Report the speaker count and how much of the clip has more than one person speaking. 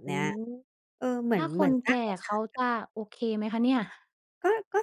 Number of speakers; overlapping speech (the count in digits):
2, about 29%